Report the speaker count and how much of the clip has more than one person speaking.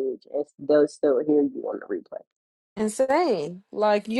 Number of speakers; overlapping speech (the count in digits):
2, no overlap